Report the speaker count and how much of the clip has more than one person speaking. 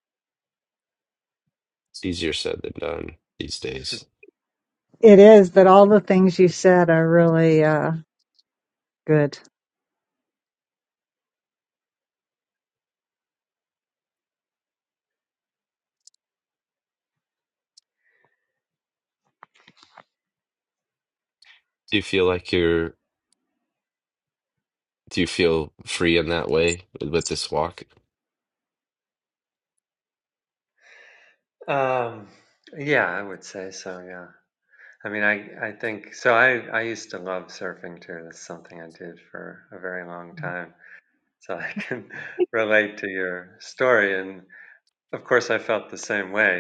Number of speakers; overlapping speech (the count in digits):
3, no overlap